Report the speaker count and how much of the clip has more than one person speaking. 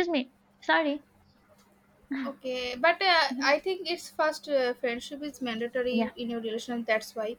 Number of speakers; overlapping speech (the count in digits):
2, about 6%